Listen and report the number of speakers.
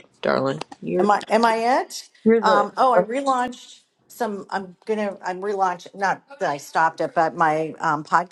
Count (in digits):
2